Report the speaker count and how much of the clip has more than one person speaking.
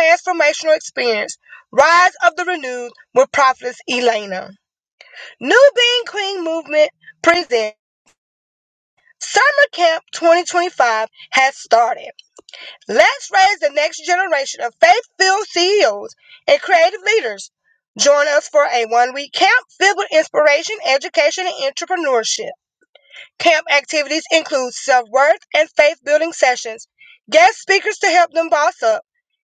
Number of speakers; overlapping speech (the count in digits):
1, no overlap